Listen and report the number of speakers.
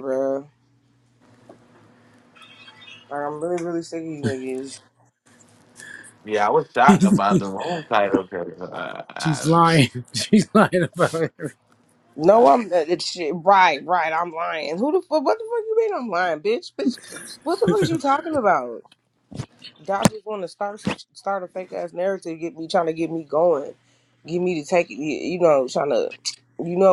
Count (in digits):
3